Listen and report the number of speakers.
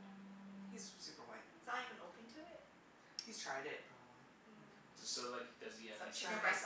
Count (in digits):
3